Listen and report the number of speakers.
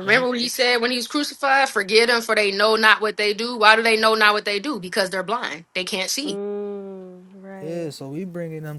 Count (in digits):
3